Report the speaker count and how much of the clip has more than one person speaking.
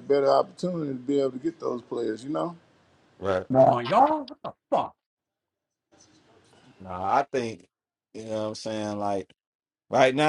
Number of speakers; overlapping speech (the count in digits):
3, no overlap